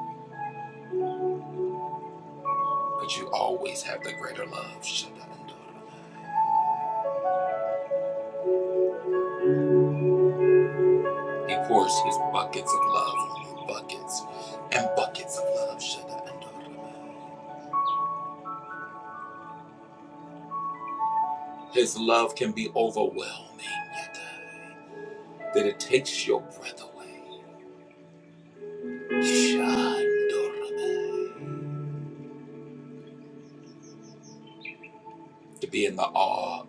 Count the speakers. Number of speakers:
1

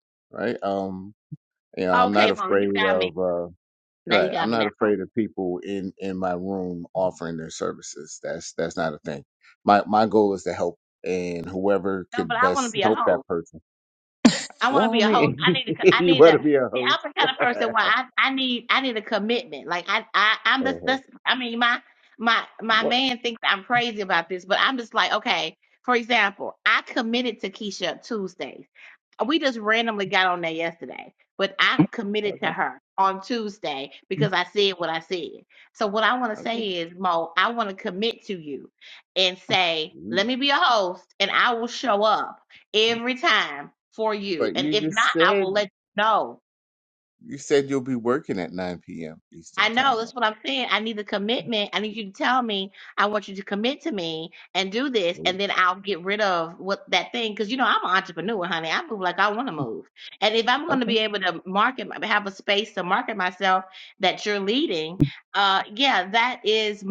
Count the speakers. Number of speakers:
2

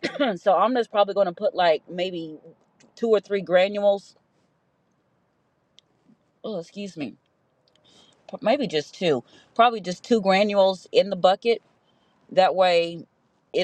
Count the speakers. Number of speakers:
1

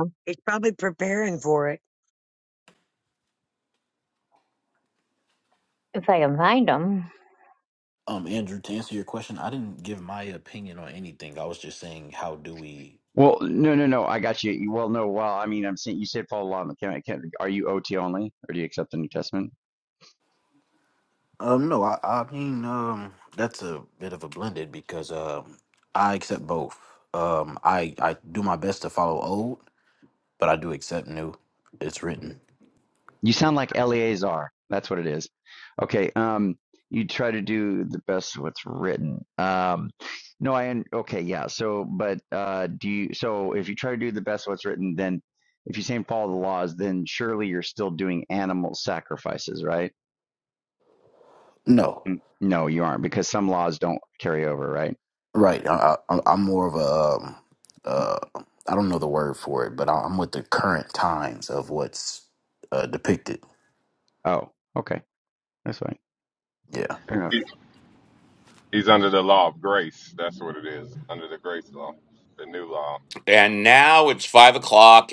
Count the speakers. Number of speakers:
6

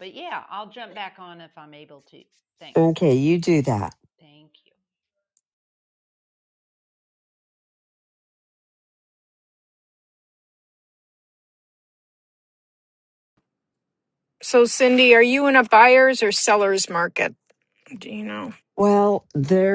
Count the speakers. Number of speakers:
3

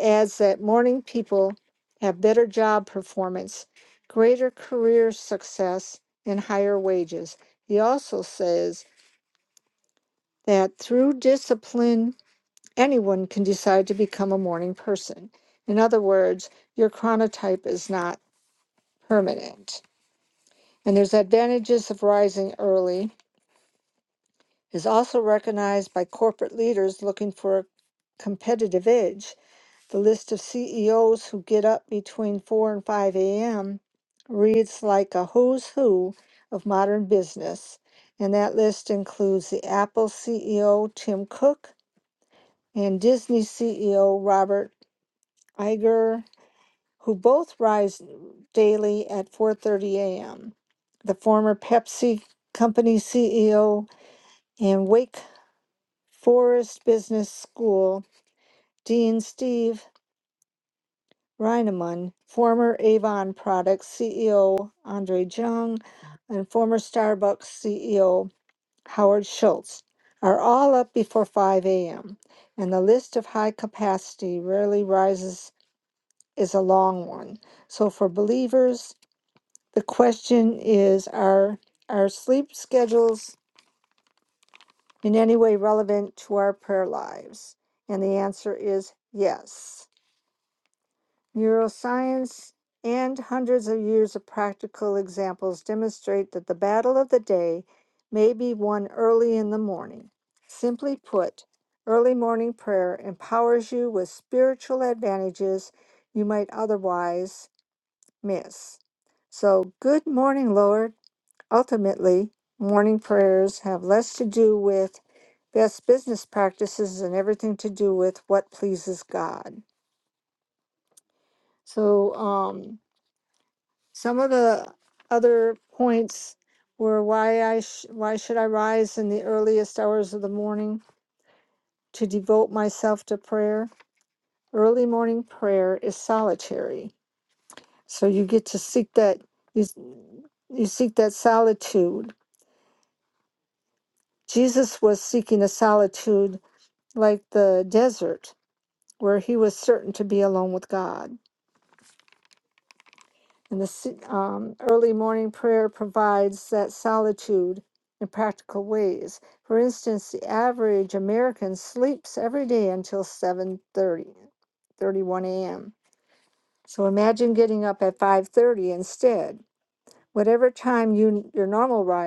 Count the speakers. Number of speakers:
1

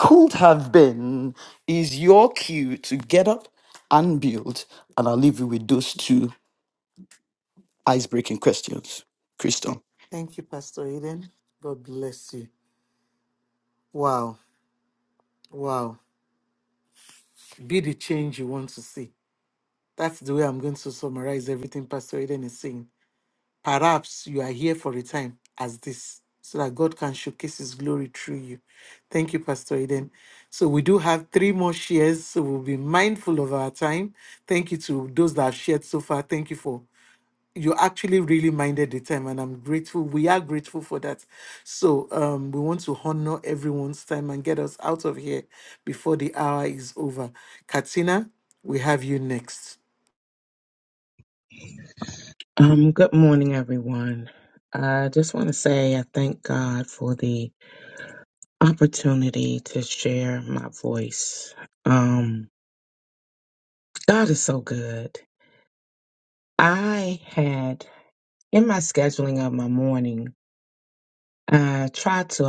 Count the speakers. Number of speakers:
3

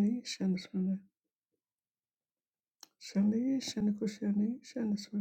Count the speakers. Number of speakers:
1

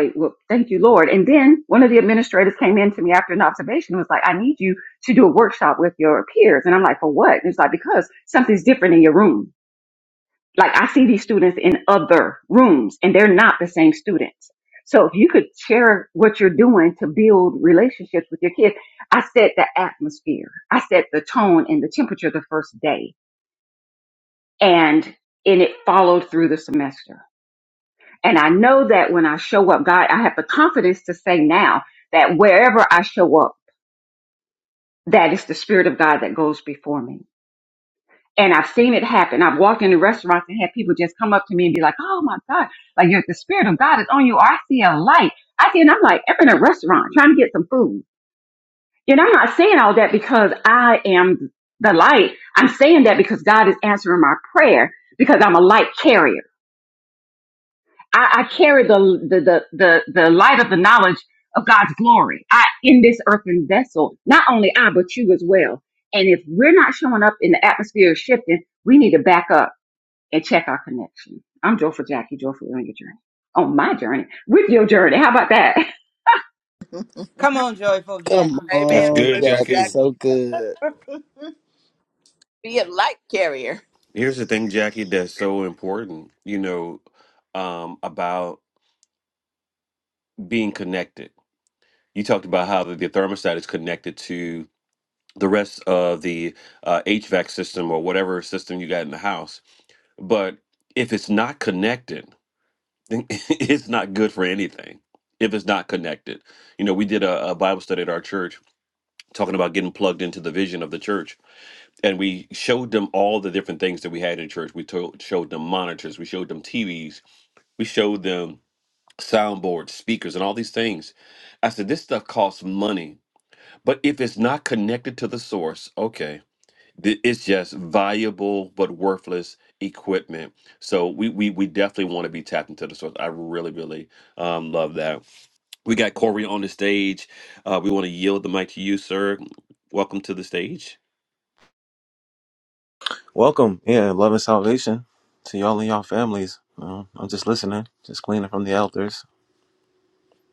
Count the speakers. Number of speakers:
6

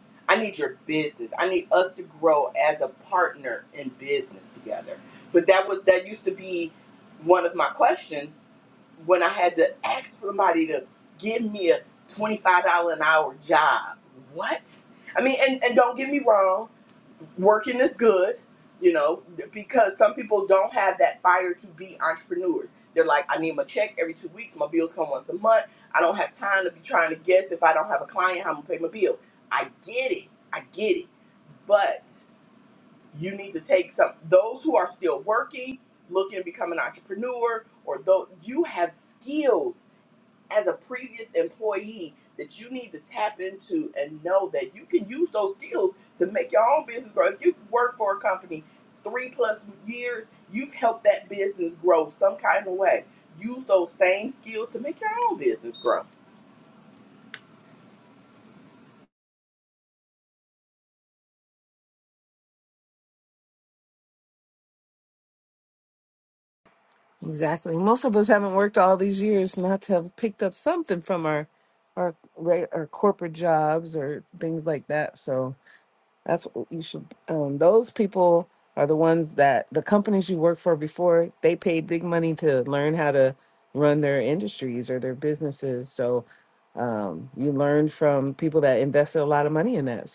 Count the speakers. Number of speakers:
2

